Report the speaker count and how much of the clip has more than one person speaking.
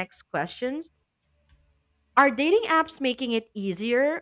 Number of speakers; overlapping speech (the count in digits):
1, no overlap